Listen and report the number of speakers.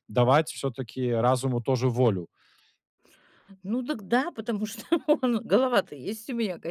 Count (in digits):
2